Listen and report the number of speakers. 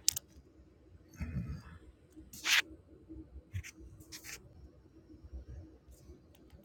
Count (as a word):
zero